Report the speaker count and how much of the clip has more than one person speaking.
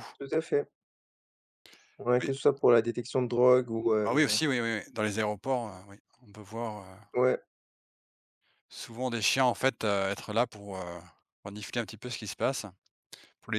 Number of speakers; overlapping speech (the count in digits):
2, about 3%